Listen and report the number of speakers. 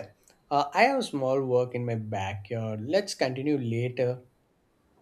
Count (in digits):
1